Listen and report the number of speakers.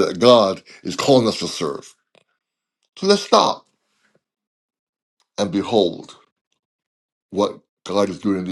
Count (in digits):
1